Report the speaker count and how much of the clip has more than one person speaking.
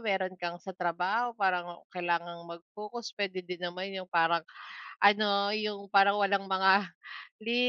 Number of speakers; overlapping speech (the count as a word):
one, no overlap